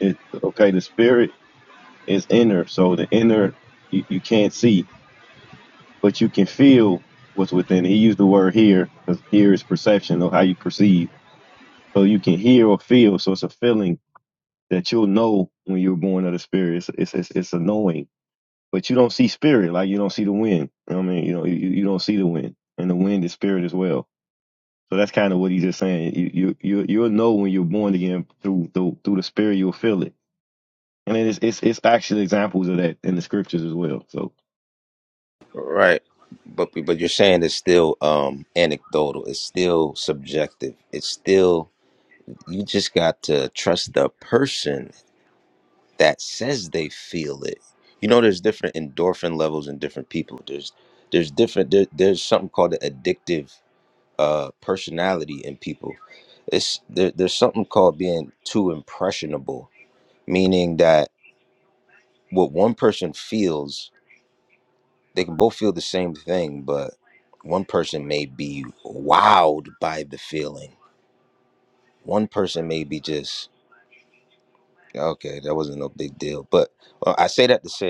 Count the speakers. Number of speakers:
2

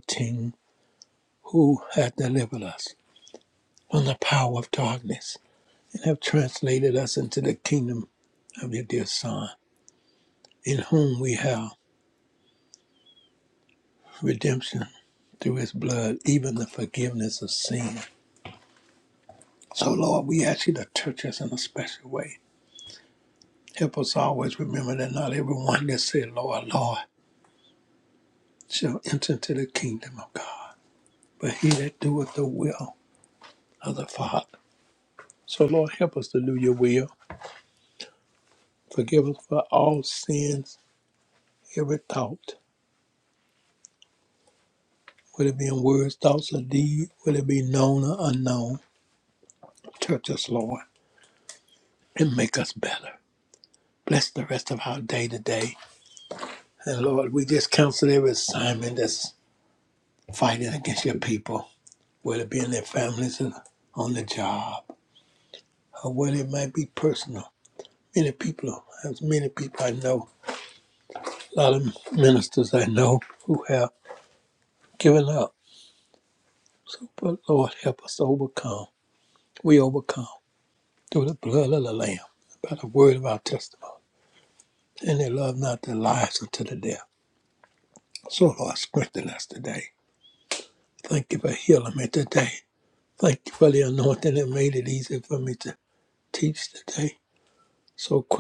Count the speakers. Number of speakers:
1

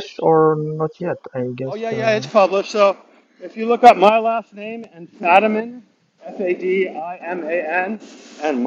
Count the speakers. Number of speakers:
2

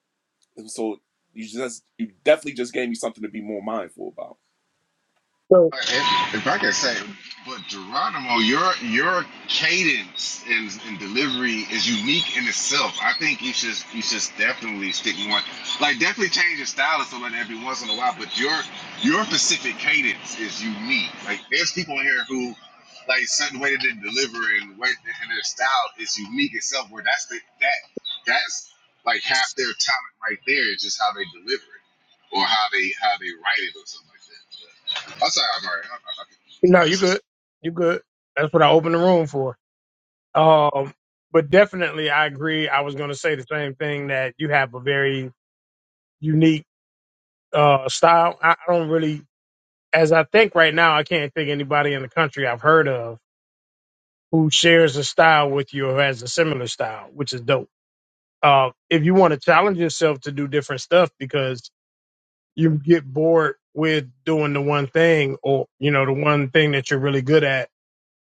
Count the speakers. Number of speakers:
3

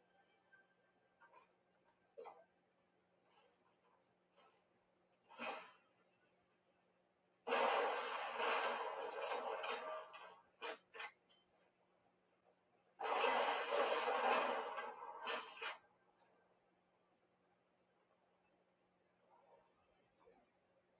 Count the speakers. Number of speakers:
0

